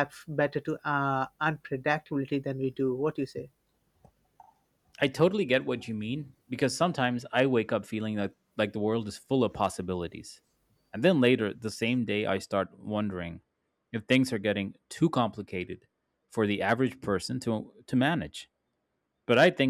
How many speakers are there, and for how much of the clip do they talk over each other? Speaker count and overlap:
two, no overlap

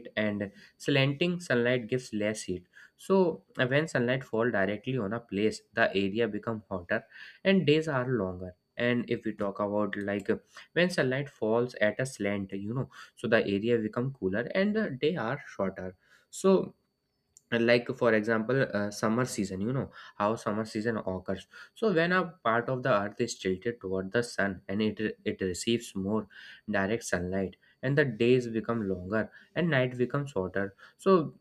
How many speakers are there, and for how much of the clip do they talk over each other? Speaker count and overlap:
one, no overlap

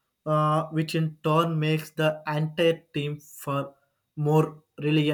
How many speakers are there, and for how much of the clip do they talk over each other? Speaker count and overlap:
one, no overlap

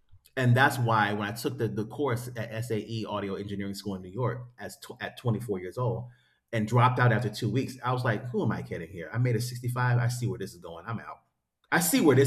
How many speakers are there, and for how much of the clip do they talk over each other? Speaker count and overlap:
one, no overlap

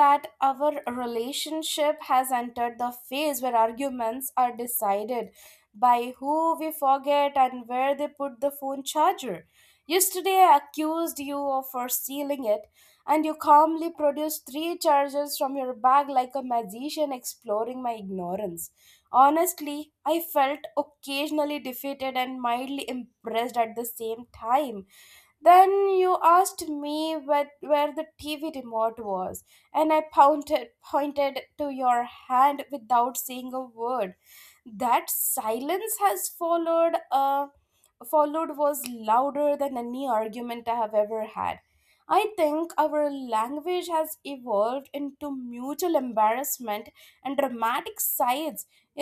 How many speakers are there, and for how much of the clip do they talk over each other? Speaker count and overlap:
one, no overlap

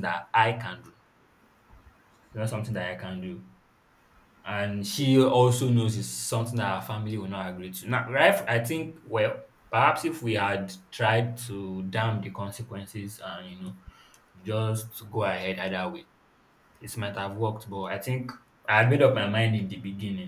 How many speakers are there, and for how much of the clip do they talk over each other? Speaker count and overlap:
one, no overlap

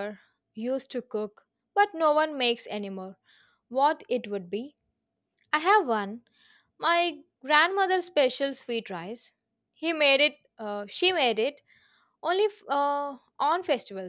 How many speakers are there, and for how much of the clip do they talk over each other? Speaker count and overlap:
one, no overlap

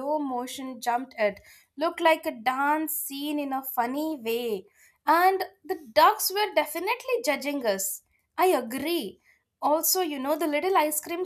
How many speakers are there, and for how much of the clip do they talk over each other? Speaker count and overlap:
one, no overlap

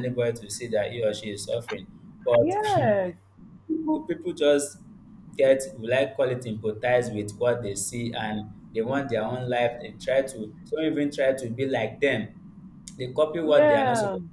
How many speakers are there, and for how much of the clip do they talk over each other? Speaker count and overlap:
two, about 7%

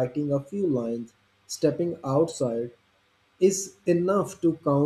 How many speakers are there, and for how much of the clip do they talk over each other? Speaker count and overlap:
one, no overlap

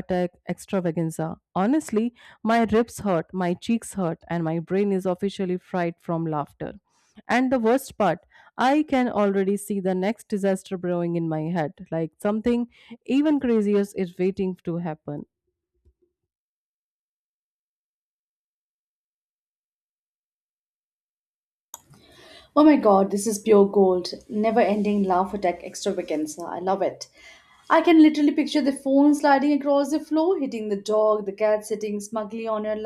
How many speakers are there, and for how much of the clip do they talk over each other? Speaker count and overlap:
two, no overlap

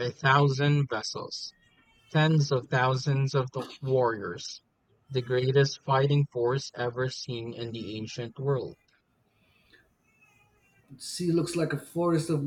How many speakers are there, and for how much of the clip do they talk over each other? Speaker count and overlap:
two, no overlap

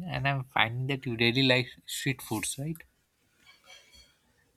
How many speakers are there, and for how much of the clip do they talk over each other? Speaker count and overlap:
one, no overlap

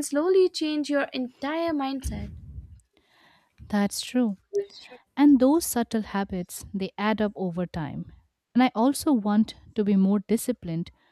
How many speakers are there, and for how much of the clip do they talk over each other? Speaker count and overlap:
two, no overlap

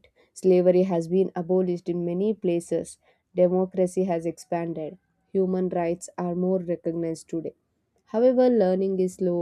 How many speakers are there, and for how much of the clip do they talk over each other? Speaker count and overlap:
one, no overlap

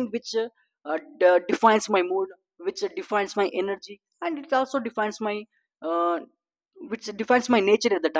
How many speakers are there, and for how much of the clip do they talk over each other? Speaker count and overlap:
one, no overlap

